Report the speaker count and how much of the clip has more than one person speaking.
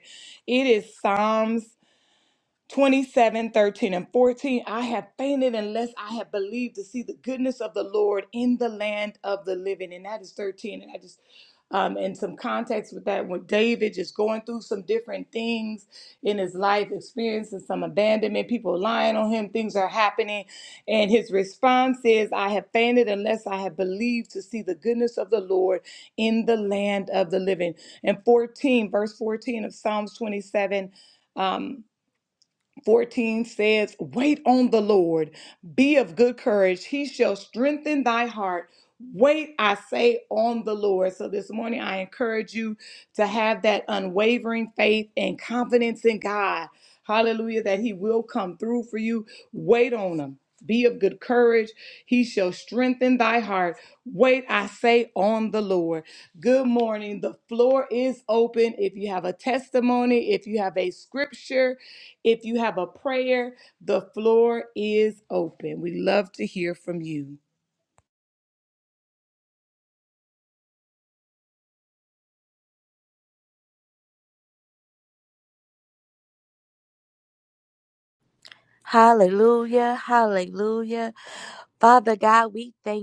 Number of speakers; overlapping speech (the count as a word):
two, no overlap